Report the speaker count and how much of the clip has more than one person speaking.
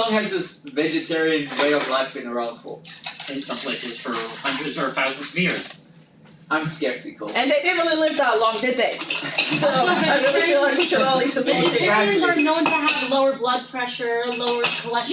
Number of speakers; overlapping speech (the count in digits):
4, about 16%